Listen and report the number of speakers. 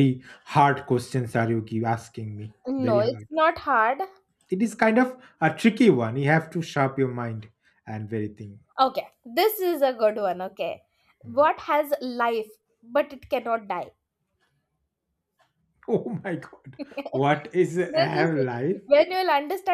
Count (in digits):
2